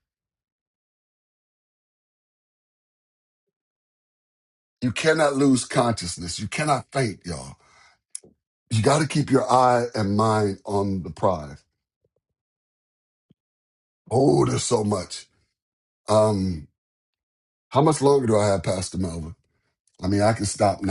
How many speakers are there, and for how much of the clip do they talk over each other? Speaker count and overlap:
one, no overlap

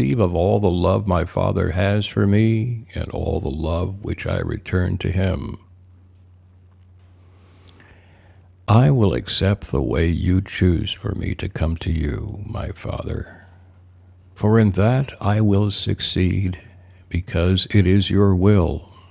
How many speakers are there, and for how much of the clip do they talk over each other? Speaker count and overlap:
one, no overlap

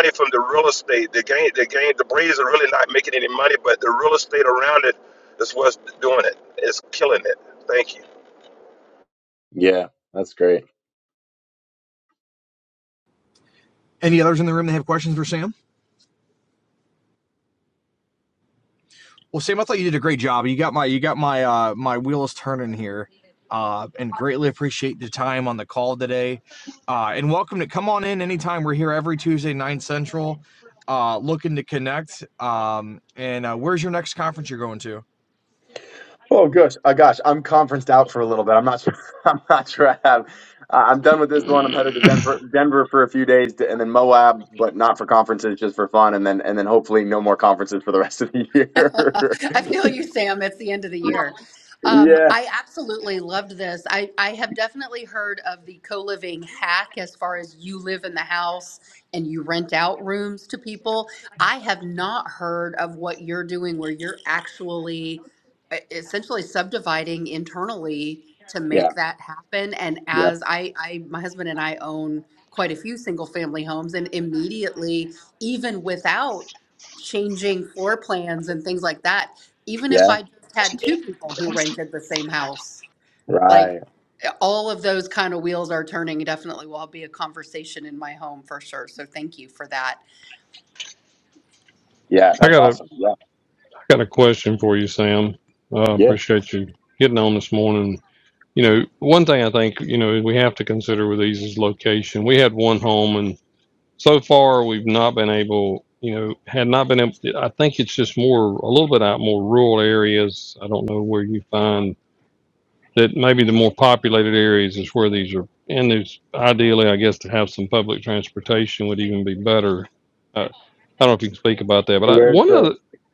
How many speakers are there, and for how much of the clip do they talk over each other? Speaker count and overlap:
five, about 2%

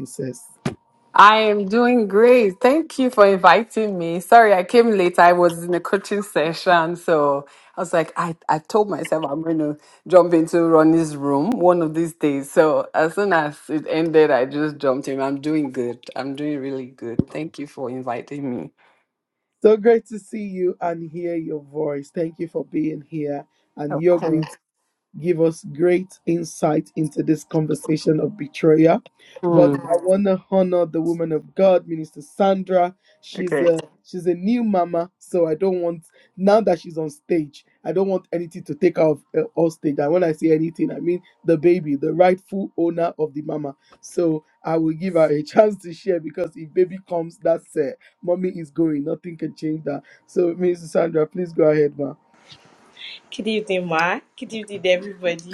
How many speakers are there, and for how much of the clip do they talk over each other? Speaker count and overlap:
three, about 2%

